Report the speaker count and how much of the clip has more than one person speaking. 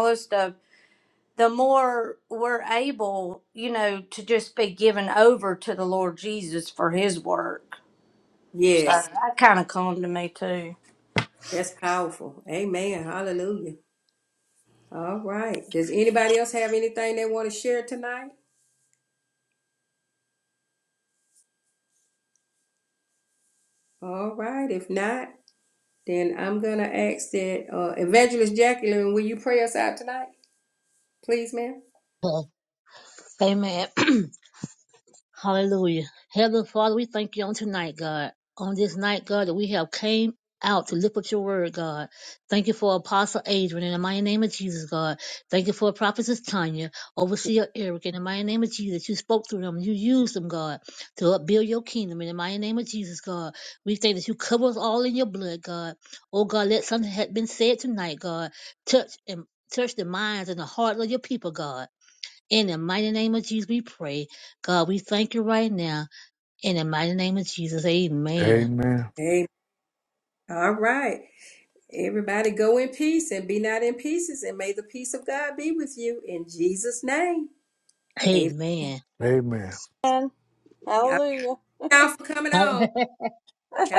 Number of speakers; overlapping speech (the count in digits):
4, about 1%